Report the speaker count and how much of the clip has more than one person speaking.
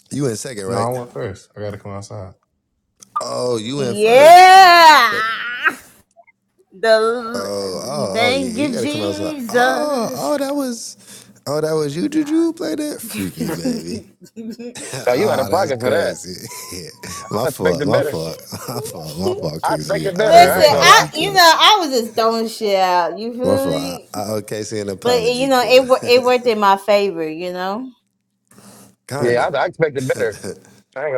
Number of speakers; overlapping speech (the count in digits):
4, about 29%